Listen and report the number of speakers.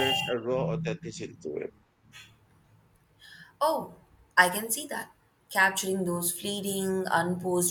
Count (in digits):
2